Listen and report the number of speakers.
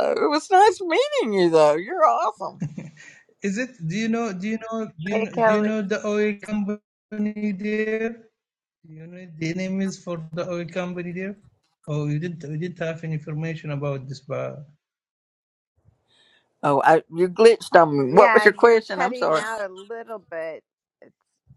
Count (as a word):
three